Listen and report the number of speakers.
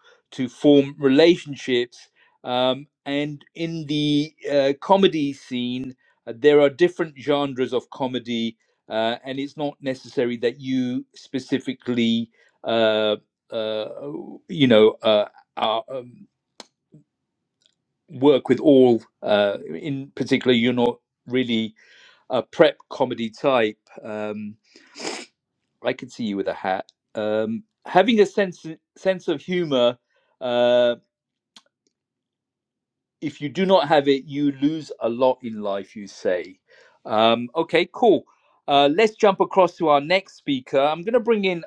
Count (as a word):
one